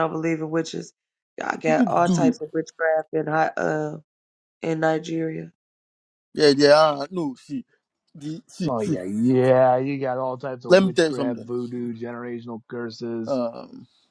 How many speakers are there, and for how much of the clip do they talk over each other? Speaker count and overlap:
three, about 13%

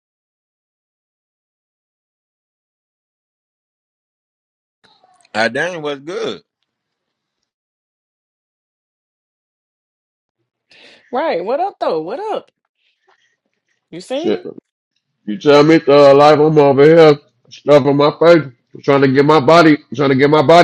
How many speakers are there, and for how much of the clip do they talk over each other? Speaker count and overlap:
three, about 1%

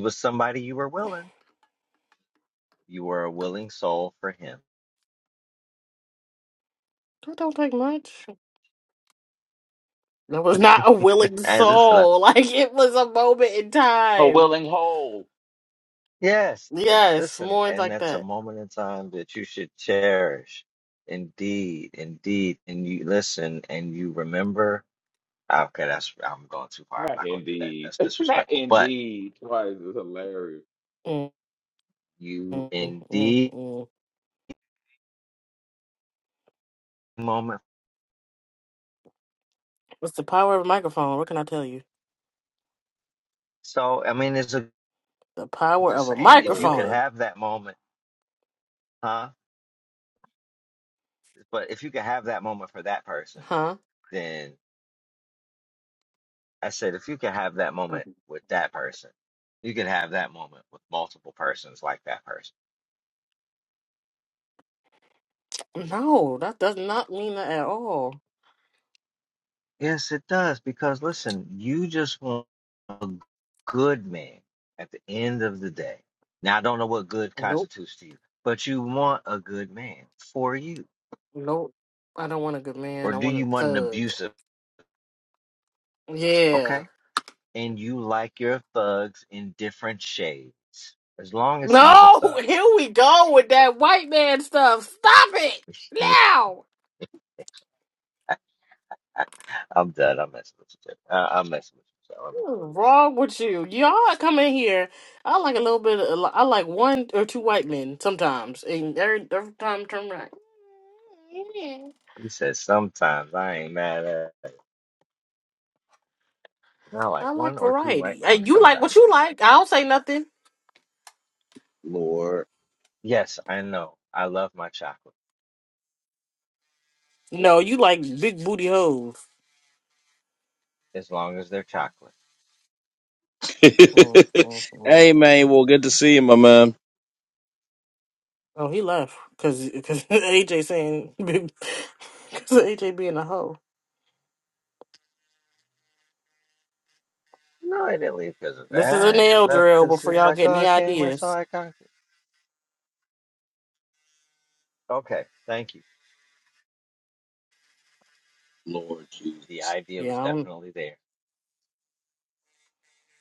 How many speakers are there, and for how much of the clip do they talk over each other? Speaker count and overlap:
four, about 8%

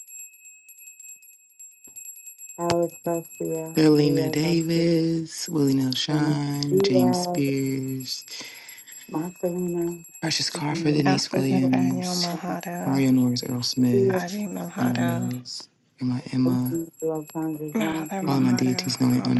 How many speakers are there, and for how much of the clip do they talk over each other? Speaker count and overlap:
three, about 33%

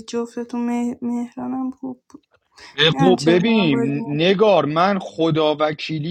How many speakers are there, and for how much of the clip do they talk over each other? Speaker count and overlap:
two, about 22%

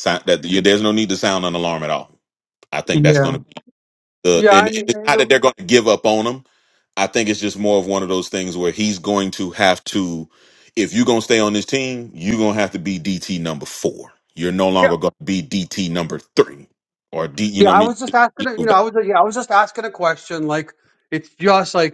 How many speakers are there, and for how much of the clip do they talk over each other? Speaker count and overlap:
two, about 7%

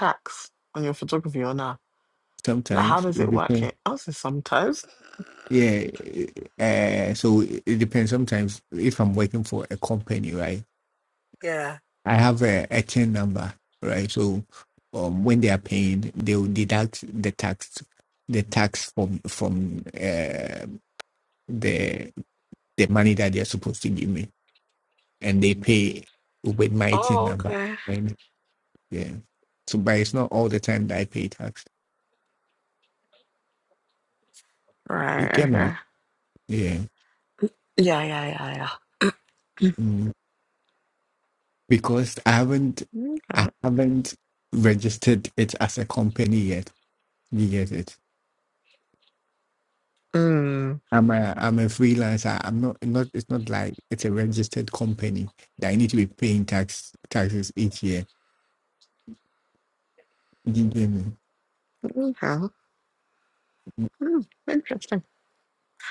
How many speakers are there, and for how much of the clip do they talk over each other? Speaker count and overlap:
two, about 3%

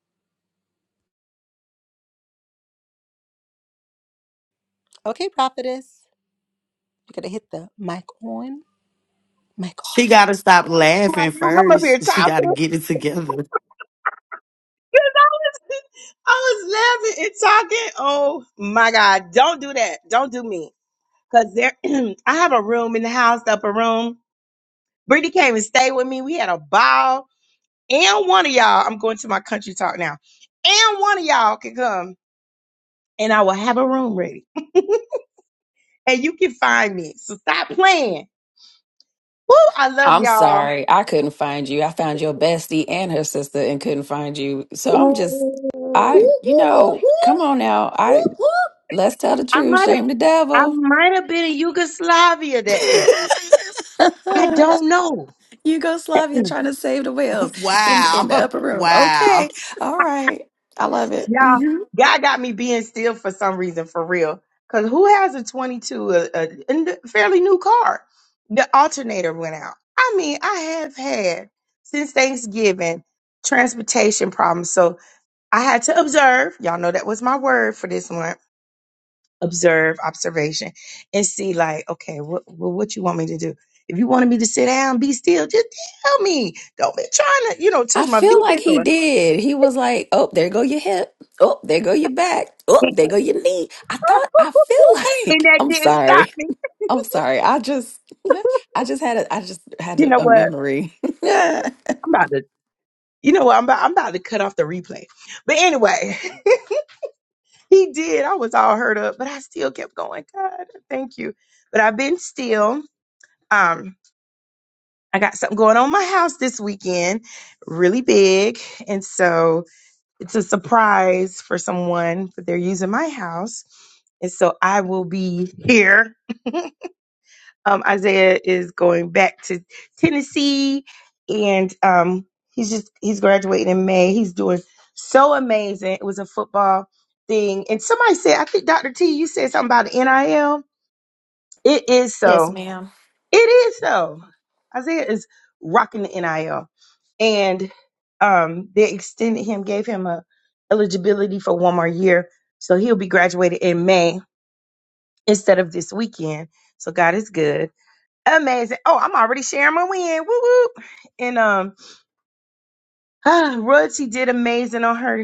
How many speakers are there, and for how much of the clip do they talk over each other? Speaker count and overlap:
four, about 5%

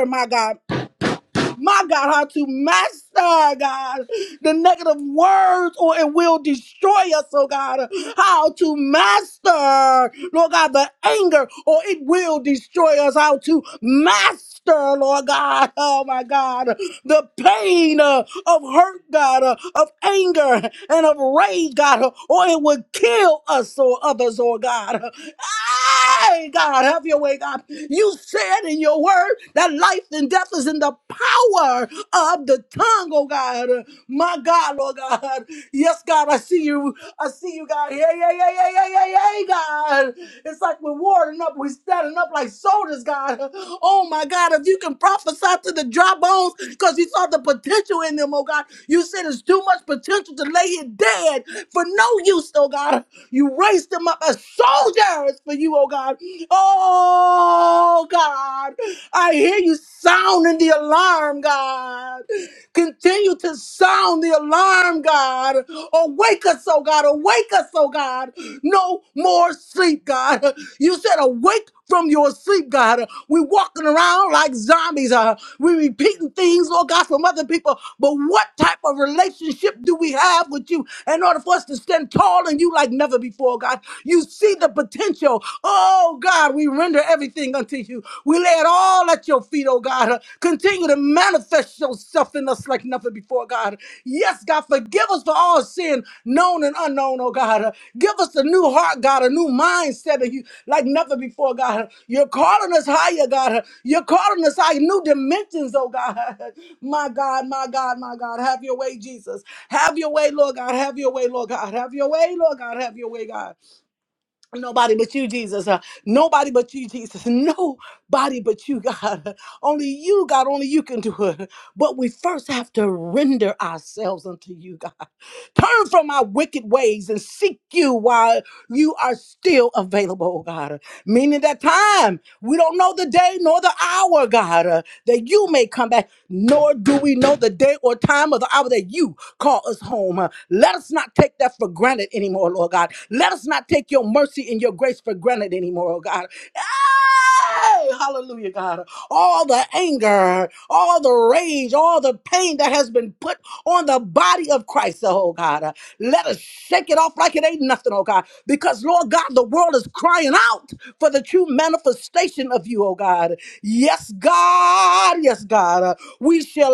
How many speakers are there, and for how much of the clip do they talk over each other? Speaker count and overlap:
one, no overlap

